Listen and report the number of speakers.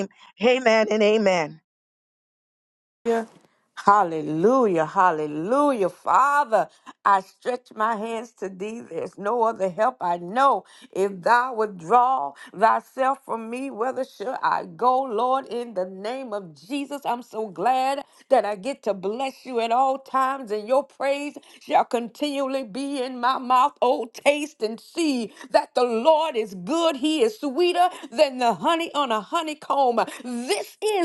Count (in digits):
2